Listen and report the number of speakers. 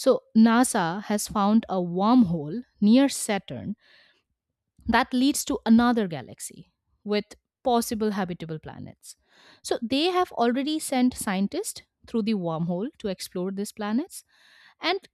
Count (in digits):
1